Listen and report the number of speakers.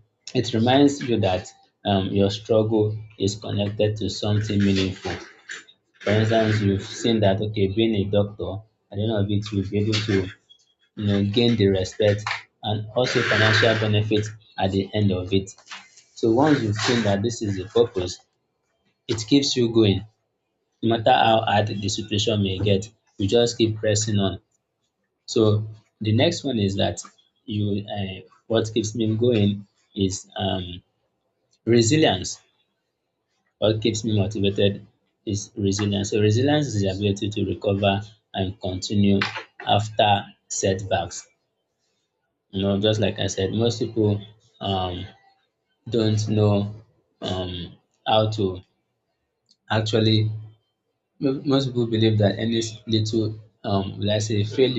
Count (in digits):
1